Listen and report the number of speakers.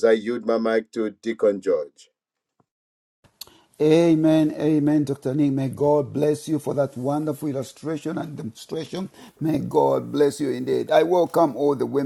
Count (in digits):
2